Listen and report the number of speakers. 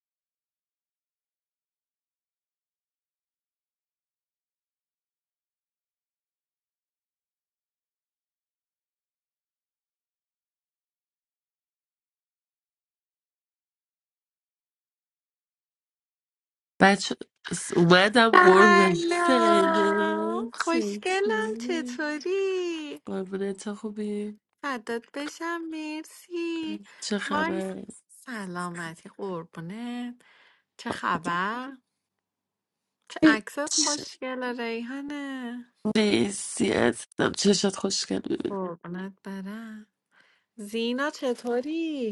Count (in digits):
2